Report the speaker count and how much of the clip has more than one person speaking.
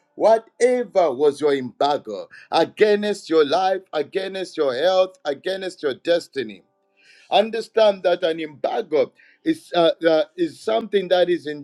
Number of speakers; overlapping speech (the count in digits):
1, no overlap